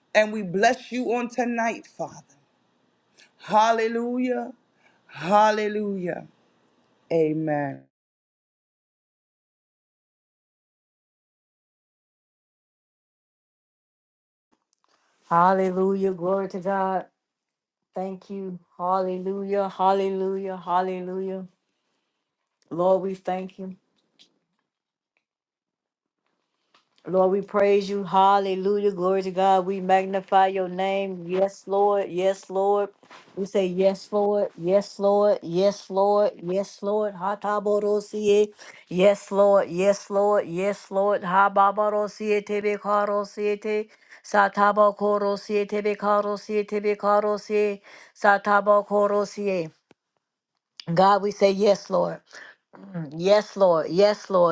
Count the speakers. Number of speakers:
2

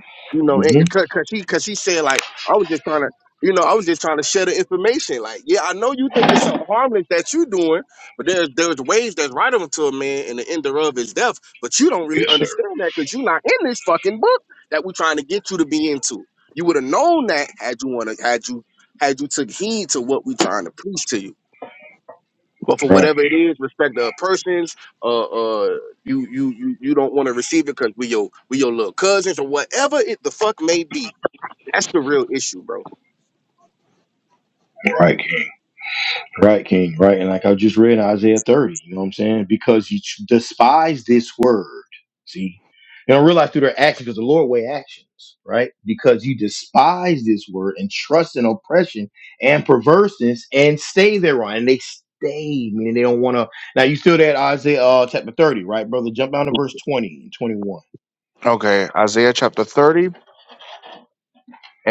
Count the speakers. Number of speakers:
3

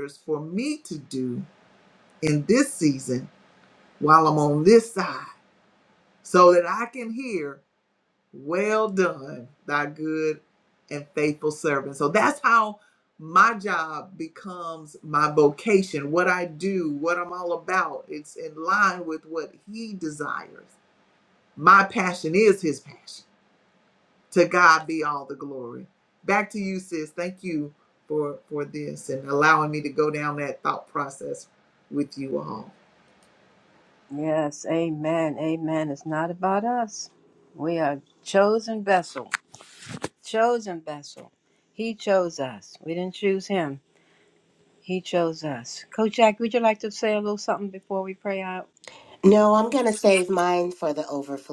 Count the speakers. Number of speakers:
3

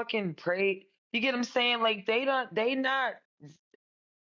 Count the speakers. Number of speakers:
1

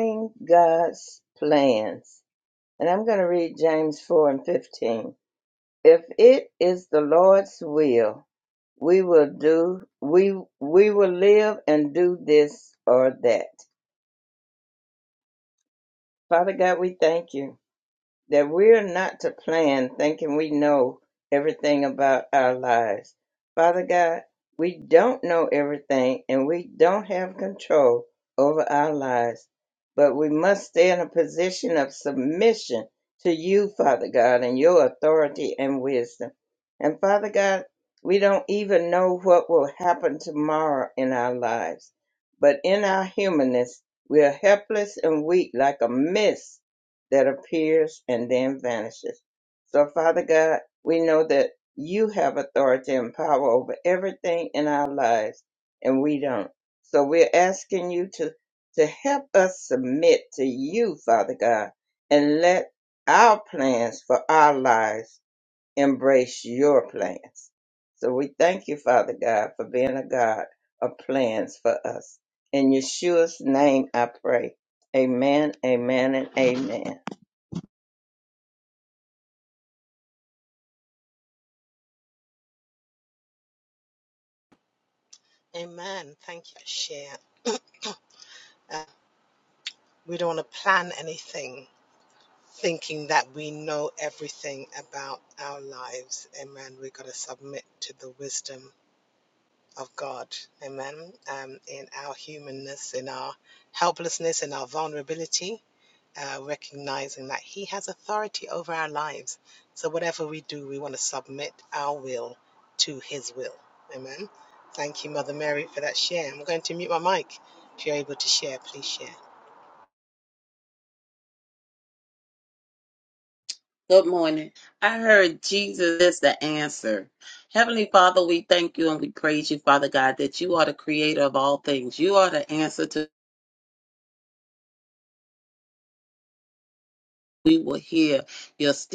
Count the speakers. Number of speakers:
3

